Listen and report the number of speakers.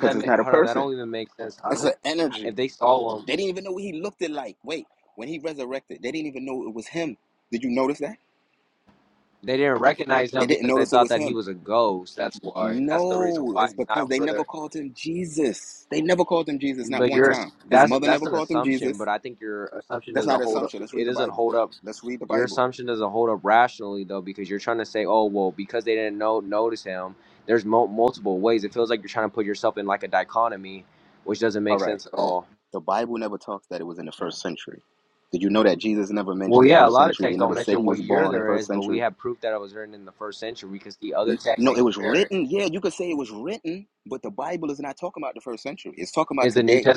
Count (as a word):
two